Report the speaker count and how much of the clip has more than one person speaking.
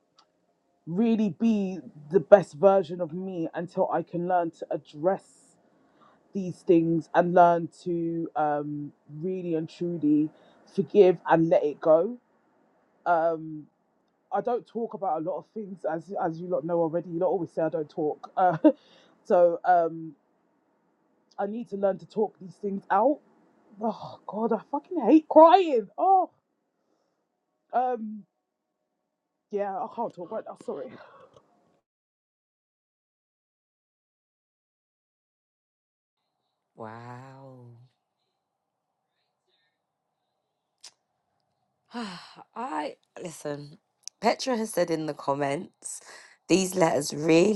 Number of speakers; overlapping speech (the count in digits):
2, no overlap